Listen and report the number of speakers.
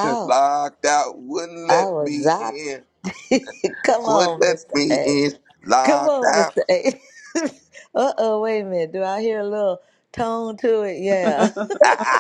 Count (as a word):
two